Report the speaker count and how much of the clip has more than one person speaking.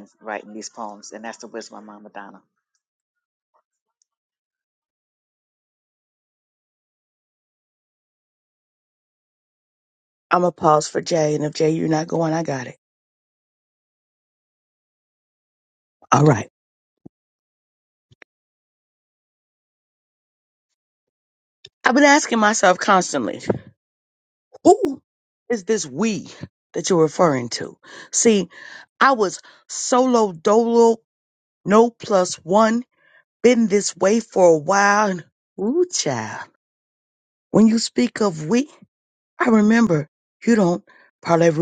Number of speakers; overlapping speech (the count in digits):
2, no overlap